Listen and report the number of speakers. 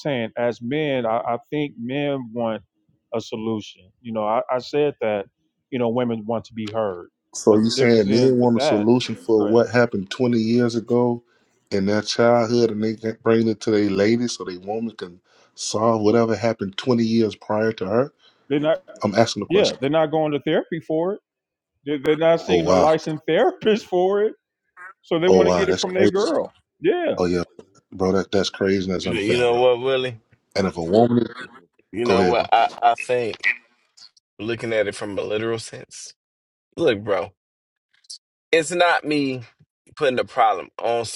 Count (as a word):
three